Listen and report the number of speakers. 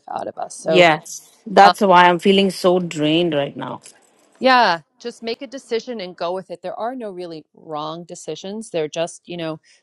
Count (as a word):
two